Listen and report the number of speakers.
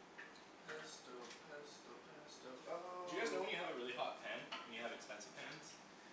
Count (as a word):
two